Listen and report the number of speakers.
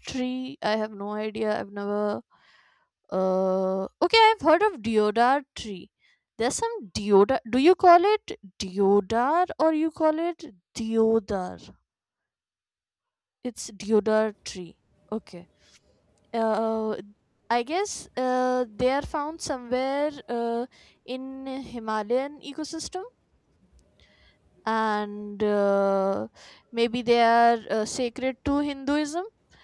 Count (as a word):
one